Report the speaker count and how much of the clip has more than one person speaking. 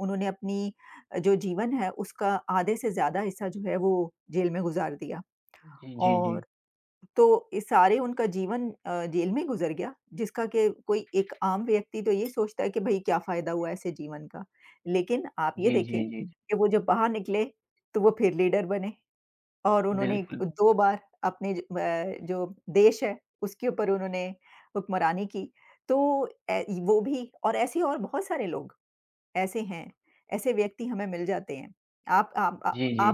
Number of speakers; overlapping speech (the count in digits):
2, about 5%